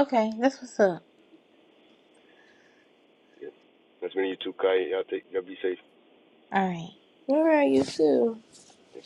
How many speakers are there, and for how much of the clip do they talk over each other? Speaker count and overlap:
three, no overlap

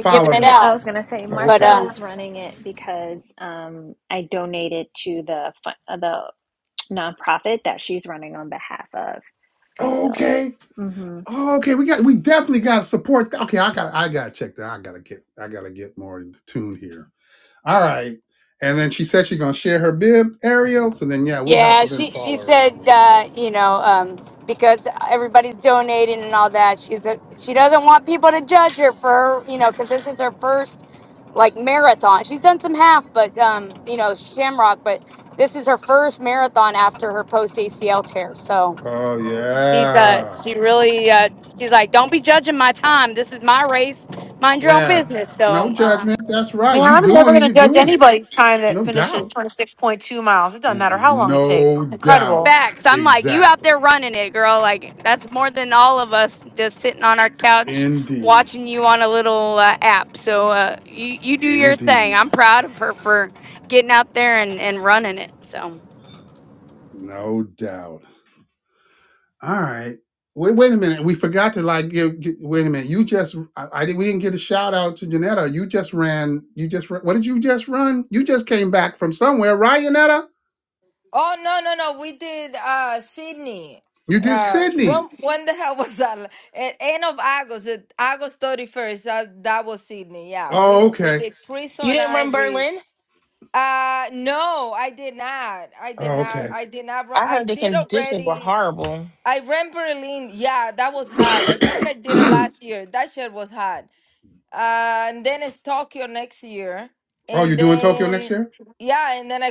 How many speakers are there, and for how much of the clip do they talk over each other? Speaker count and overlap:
six, about 15%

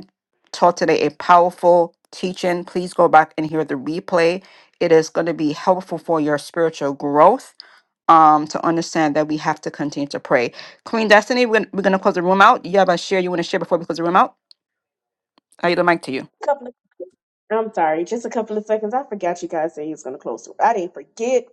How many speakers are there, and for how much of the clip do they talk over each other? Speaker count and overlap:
two, no overlap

